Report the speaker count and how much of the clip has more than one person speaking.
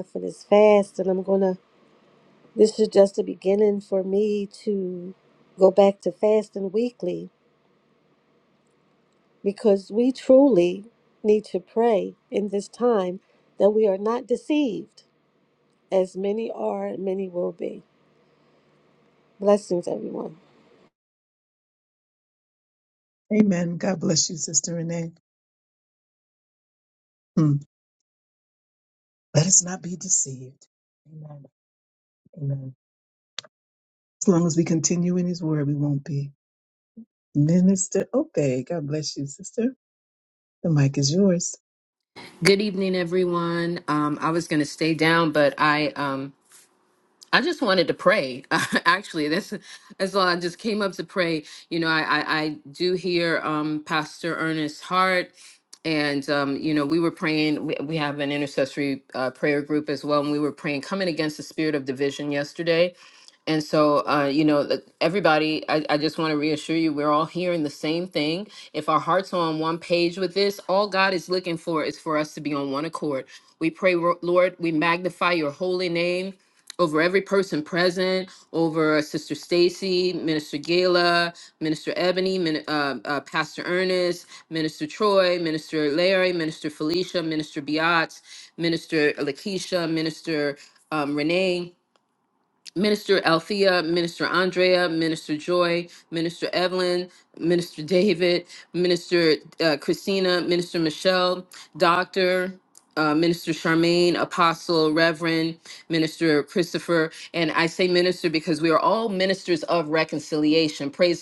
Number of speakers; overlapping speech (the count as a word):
three, no overlap